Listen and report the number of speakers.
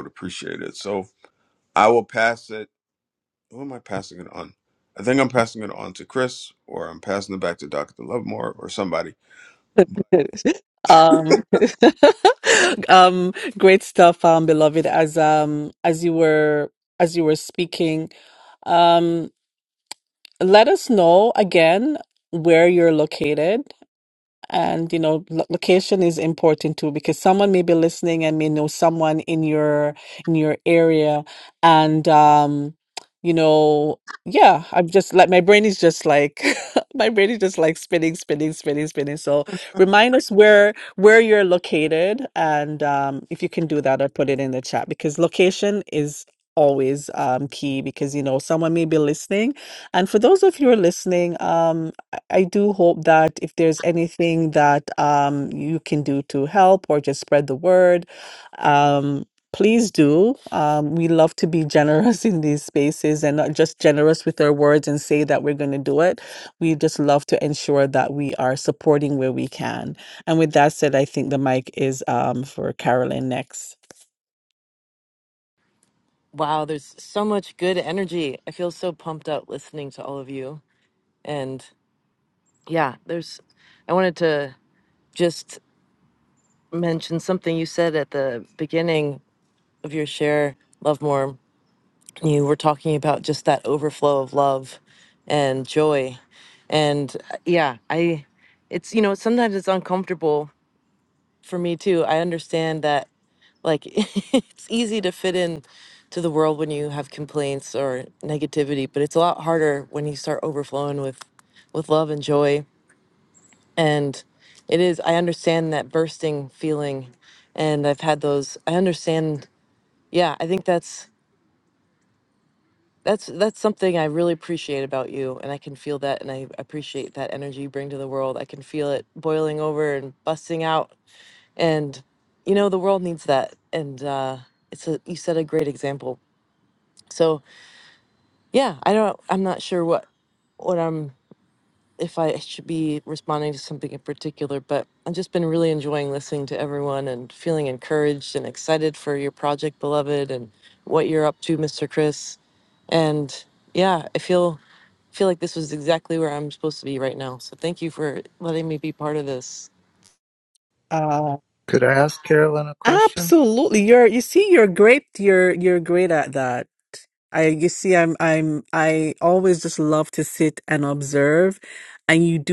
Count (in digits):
4